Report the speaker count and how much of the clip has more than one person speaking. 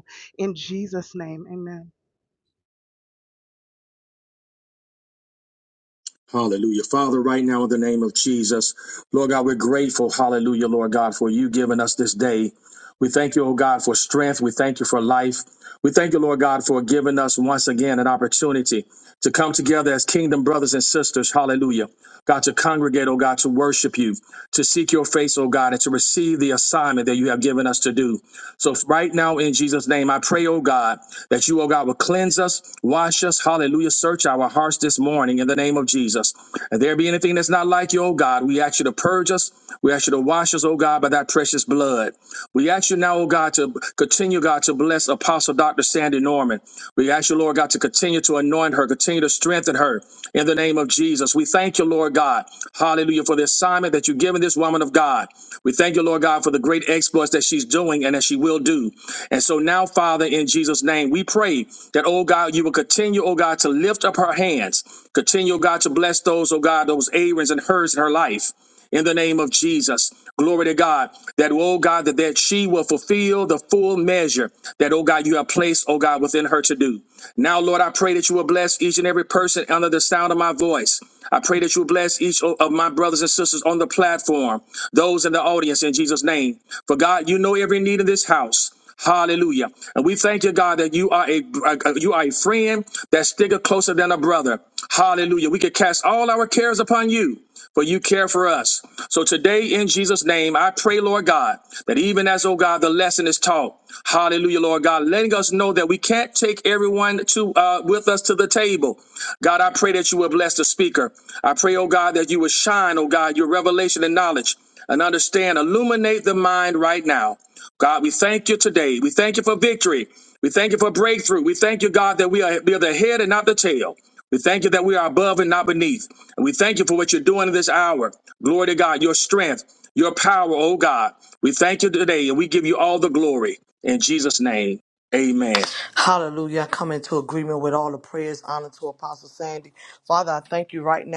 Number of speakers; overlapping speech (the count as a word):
three, no overlap